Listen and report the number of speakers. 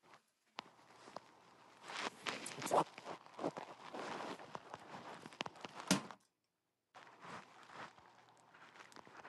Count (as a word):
zero